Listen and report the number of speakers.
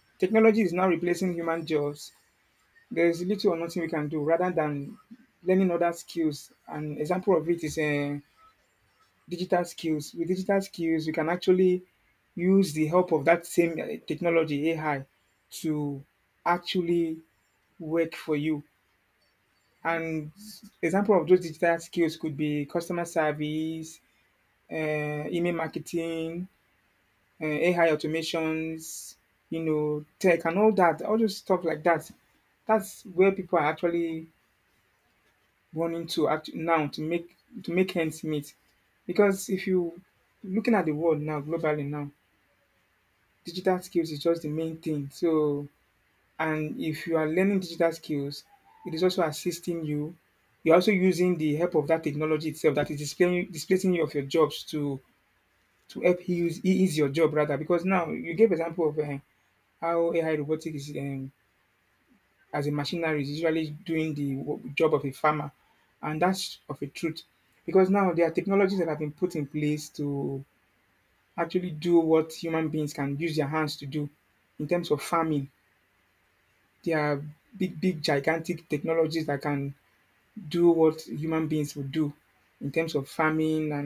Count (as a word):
one